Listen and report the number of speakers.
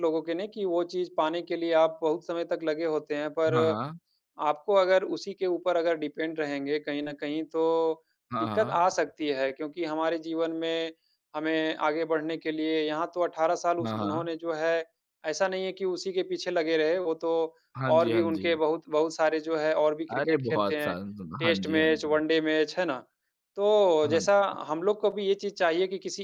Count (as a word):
two